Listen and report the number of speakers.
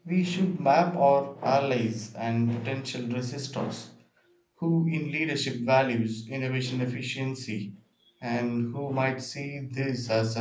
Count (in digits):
1